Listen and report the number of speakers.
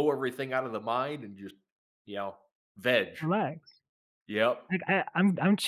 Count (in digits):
2